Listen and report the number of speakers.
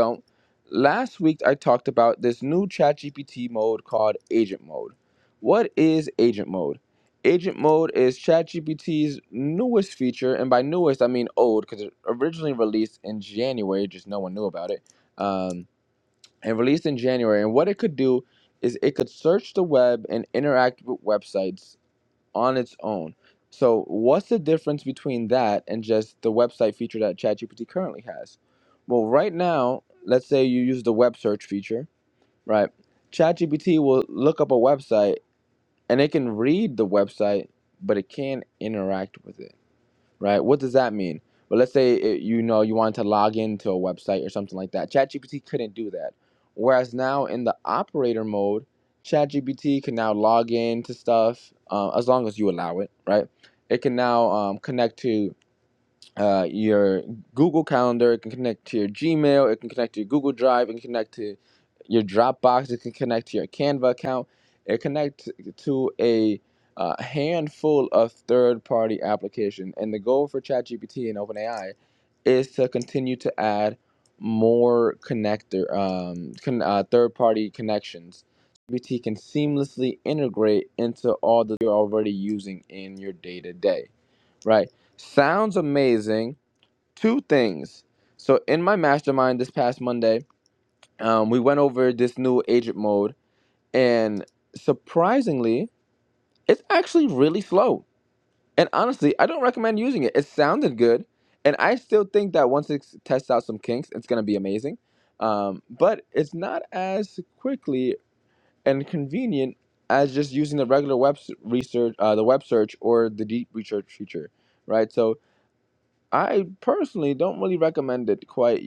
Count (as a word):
one